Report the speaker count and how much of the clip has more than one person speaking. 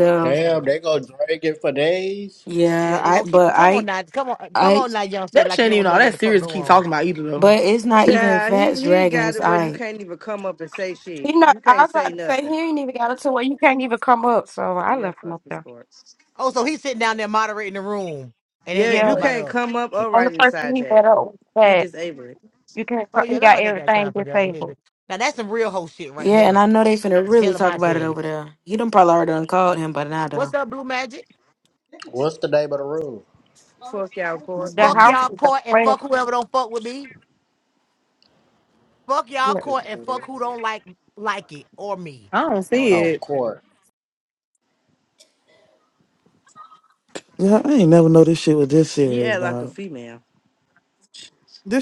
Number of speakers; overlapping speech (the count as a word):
seven, about 28%